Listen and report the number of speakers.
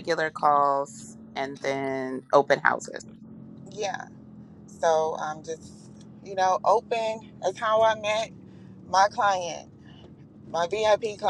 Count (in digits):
2